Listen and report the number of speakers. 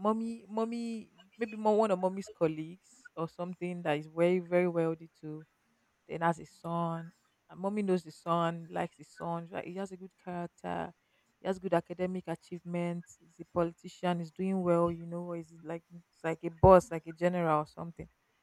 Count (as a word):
one